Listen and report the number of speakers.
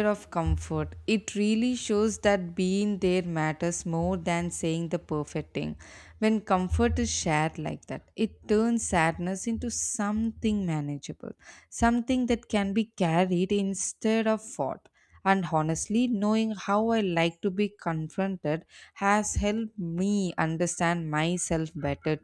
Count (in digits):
1